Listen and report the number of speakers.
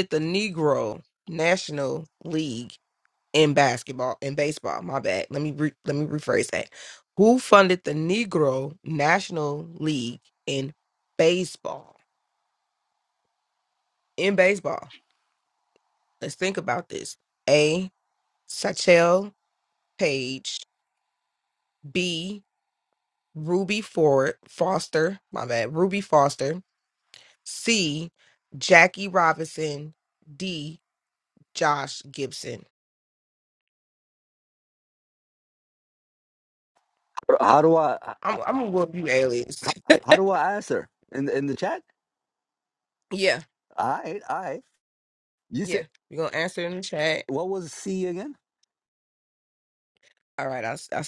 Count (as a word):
two